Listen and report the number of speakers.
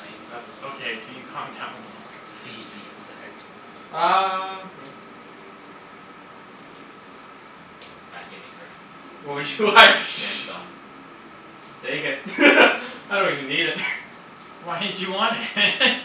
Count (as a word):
three